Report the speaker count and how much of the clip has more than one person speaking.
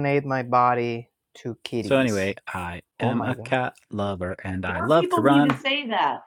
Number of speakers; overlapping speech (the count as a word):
three, about 25%